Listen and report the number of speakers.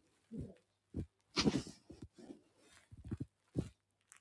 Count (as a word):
zero